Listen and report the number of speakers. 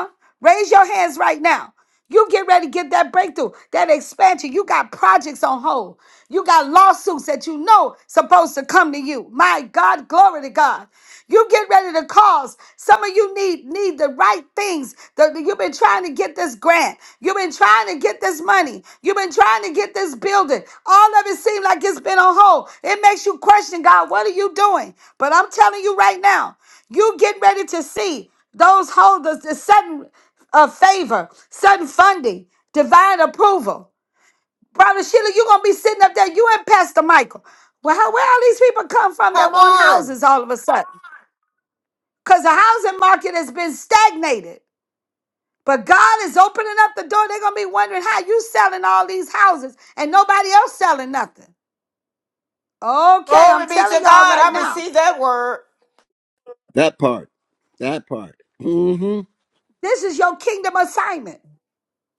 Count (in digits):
3